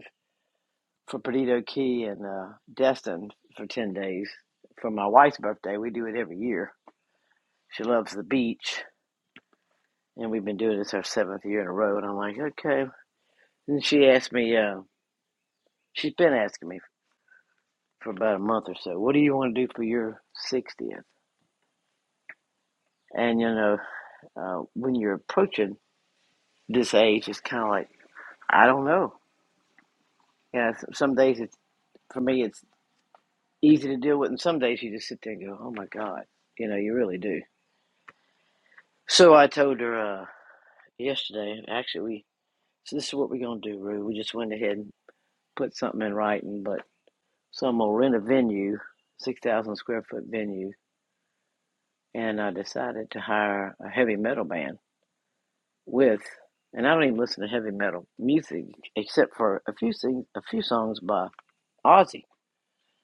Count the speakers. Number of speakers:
one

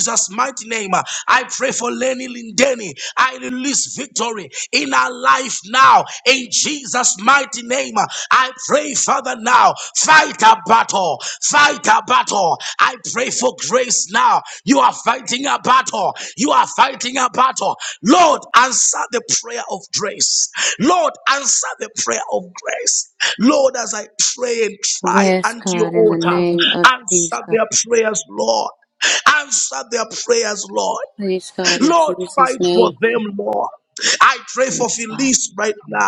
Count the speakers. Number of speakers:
two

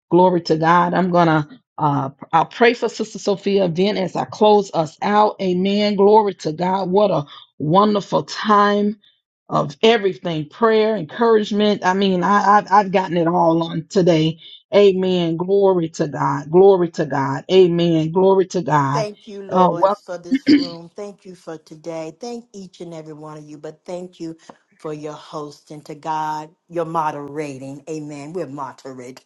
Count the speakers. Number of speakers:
two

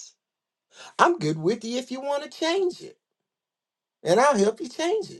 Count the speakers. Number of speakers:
one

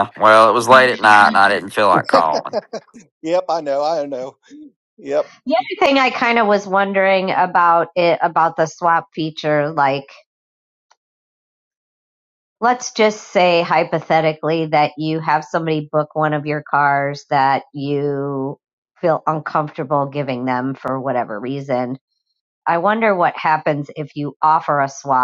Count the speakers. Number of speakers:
three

